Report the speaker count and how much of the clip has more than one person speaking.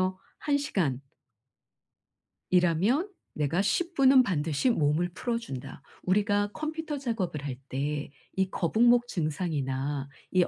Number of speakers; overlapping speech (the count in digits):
1, no overlap